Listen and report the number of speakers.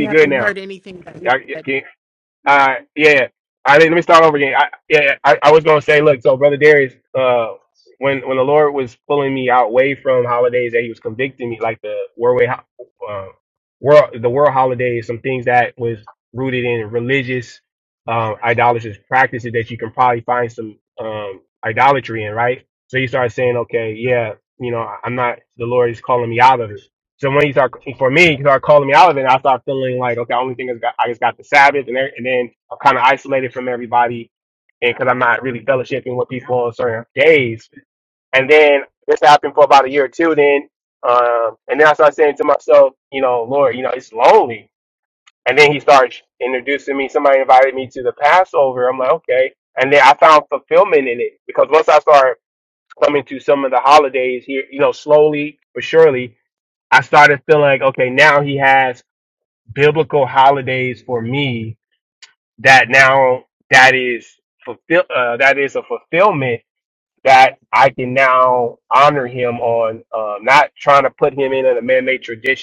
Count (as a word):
two